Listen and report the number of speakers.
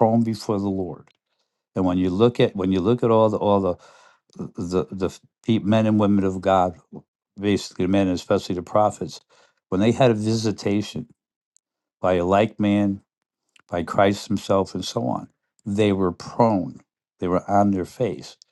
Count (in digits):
1